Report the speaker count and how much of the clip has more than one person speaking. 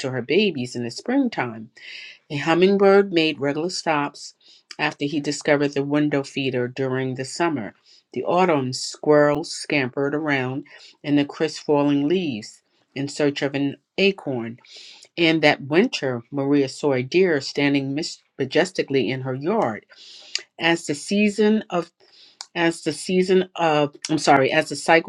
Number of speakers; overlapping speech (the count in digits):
1, no overlap